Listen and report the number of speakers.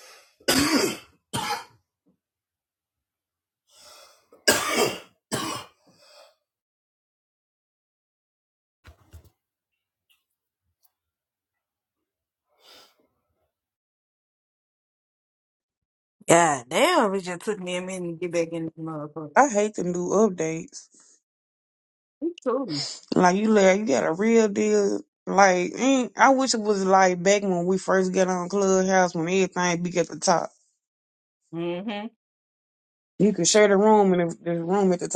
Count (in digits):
2